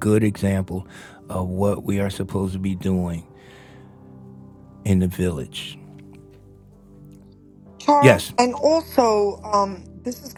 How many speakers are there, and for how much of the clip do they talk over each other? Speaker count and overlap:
2, about 3%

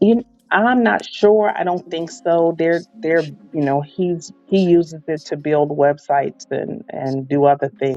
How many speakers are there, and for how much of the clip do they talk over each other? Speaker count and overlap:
1, no overlap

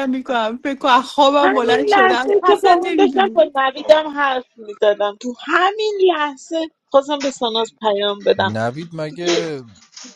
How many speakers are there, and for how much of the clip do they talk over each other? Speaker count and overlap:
3, about 24%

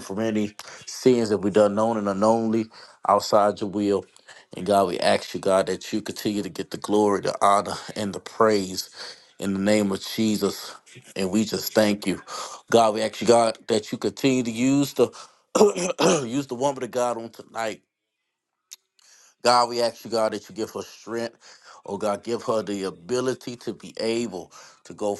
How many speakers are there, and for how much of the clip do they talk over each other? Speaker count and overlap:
1, no overlap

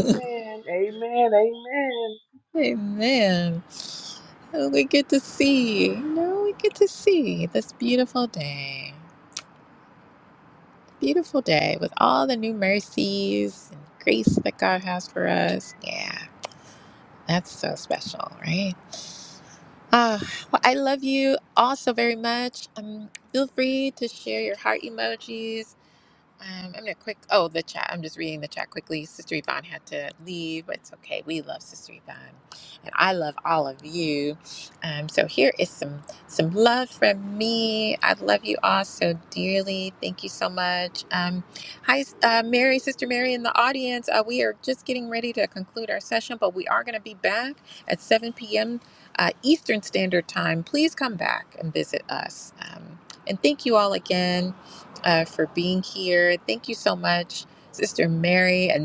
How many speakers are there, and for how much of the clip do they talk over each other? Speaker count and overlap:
2, no overlap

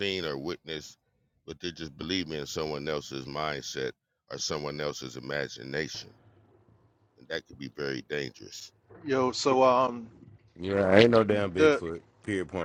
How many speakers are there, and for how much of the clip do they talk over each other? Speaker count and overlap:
3, about 2%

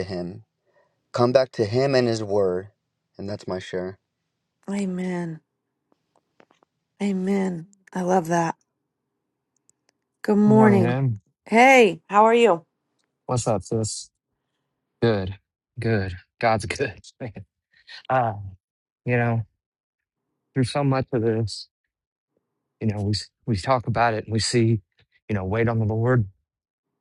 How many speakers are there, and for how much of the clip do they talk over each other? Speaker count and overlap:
3, about 2%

